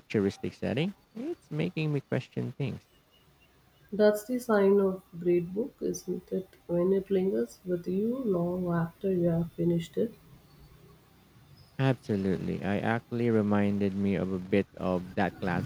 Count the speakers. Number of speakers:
2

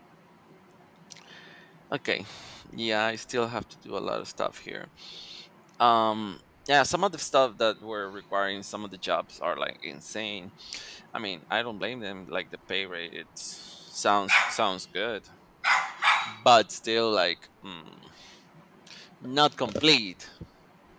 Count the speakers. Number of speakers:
1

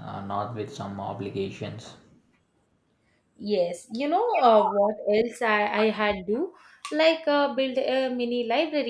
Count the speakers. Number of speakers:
2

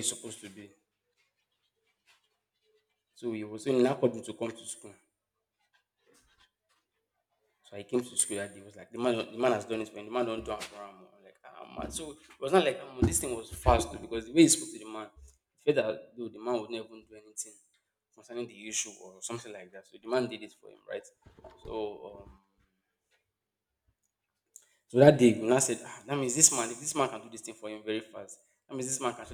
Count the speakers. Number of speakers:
1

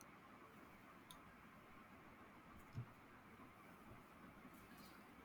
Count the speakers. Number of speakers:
0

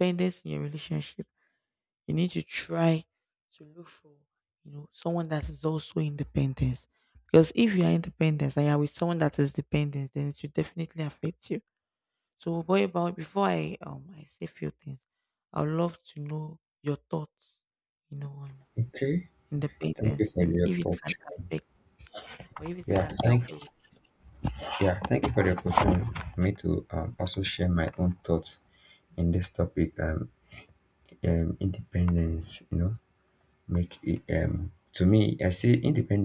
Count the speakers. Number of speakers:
2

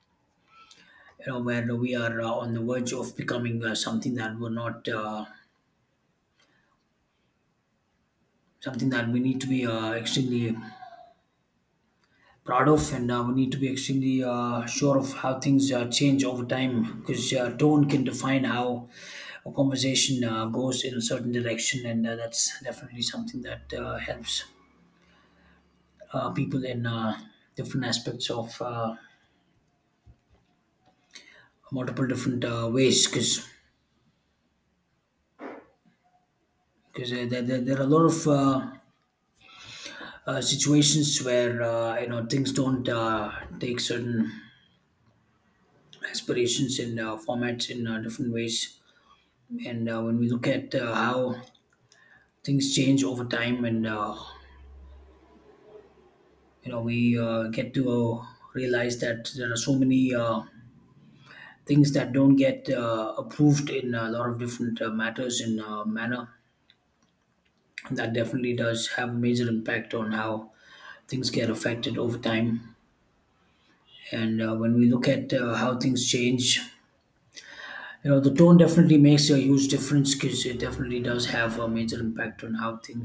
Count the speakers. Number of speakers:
1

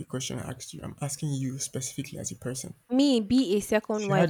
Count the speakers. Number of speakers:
2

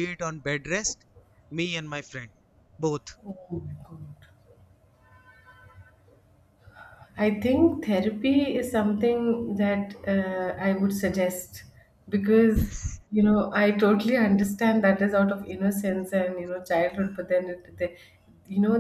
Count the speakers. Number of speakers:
2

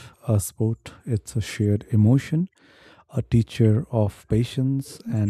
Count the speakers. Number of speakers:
1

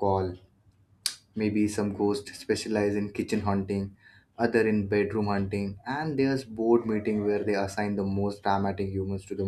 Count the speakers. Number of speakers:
1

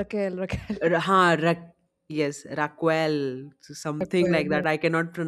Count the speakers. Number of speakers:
2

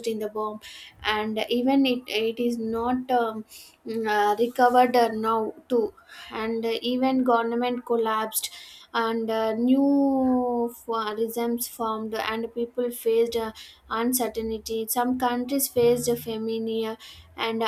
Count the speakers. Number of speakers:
1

